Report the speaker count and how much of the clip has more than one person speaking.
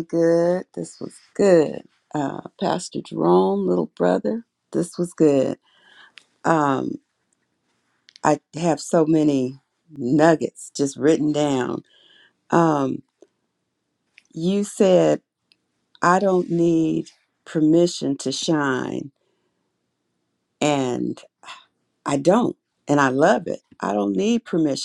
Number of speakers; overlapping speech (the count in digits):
1, no overlap